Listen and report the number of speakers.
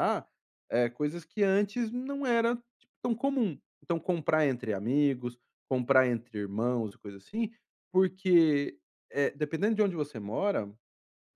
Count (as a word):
one